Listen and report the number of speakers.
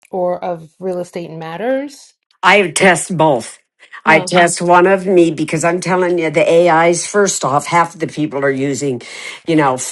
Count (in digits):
2